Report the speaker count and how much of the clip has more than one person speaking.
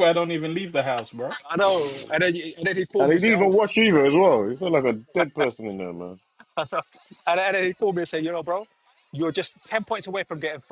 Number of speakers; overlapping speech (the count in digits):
3, about 5%